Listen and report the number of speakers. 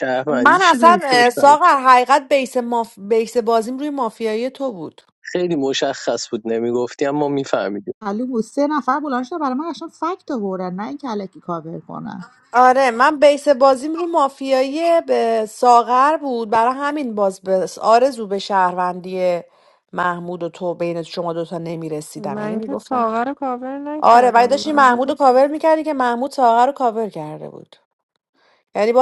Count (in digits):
4